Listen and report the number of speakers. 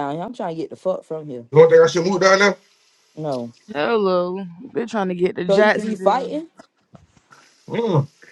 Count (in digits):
3